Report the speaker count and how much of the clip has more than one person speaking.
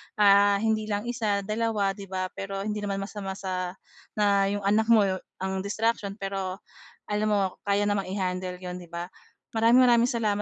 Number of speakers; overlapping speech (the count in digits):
1, no overlap